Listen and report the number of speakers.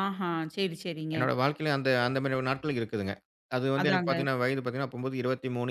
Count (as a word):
two